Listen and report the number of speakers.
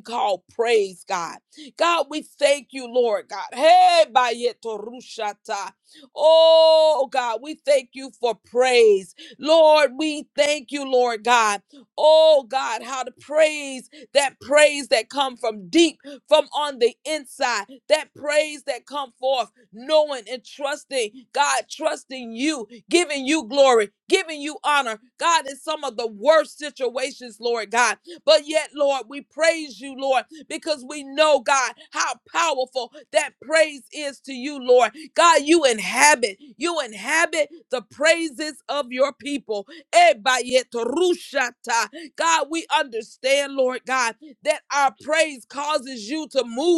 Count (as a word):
one